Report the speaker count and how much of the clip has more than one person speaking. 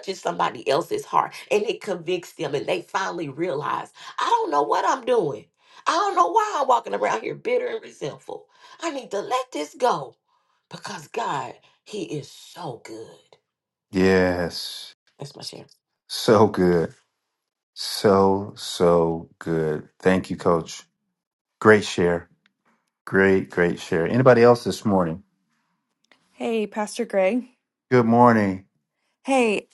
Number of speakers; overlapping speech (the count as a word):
three, no overlap